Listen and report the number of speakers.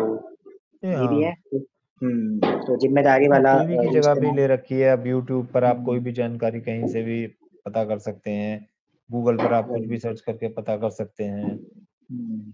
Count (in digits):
2